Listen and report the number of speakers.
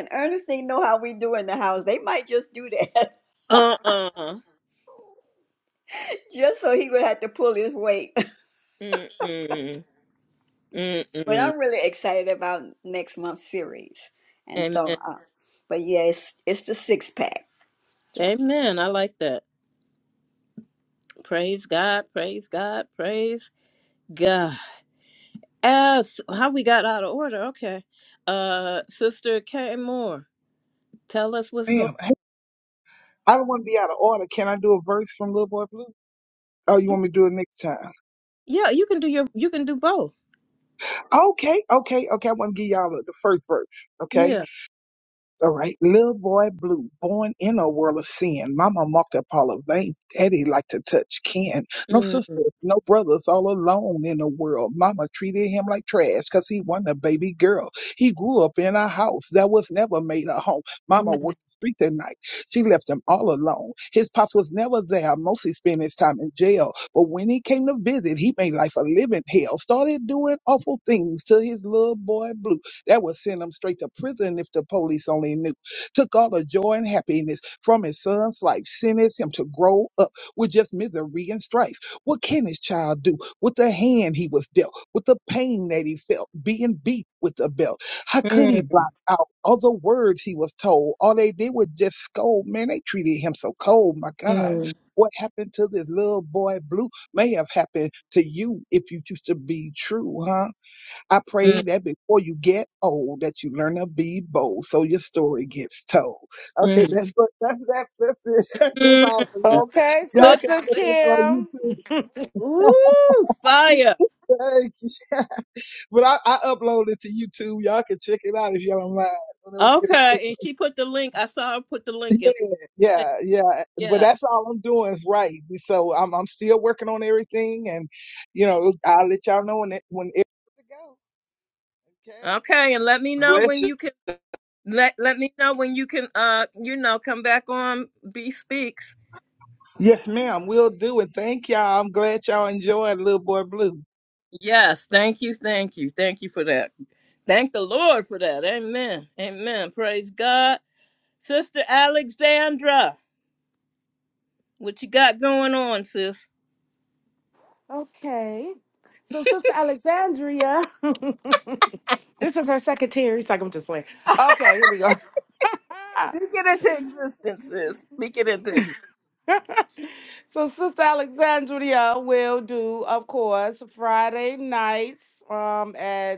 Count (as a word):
four